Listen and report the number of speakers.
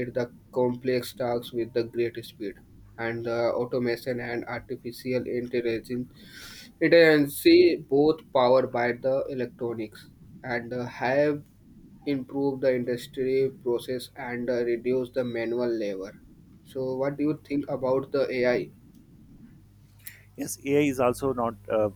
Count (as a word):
two